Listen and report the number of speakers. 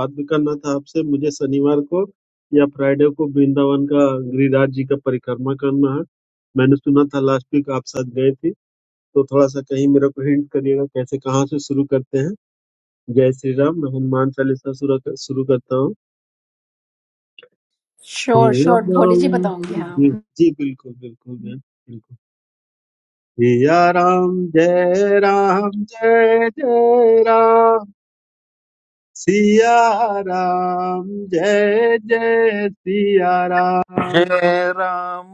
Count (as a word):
three